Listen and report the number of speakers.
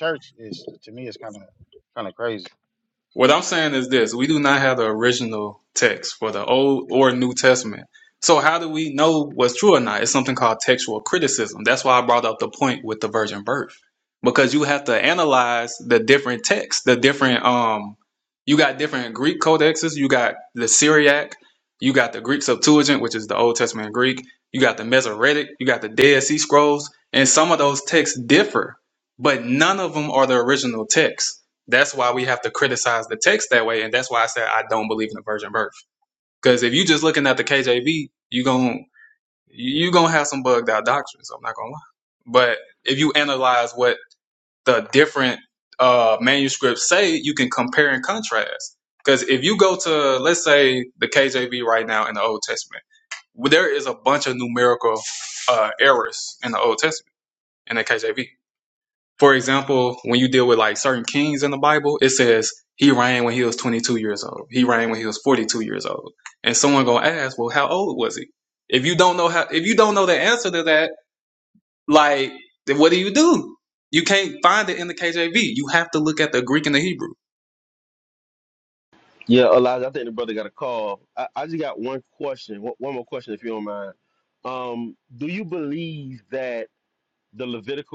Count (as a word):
three